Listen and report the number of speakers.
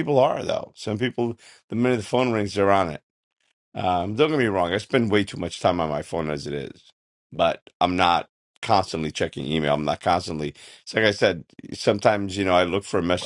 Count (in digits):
1